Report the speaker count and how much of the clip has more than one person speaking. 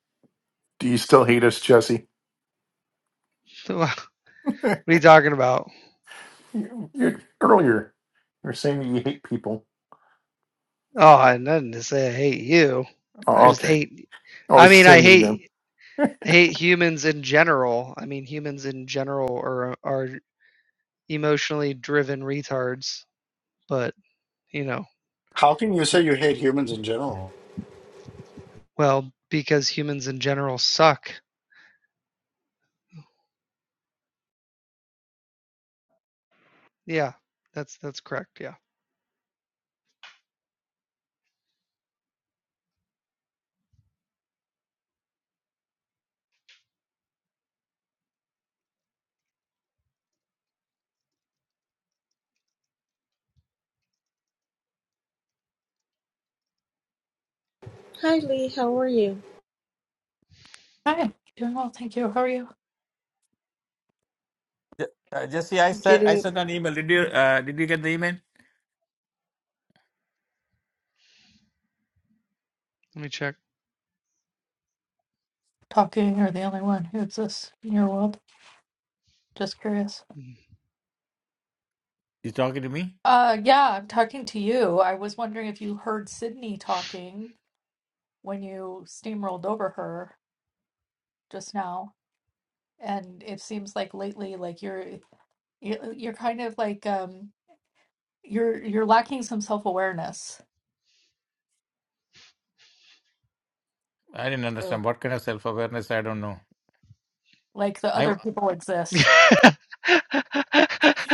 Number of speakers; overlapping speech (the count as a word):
six, about 2%